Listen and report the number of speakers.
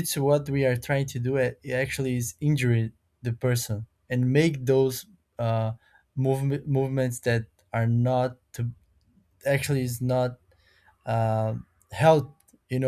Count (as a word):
one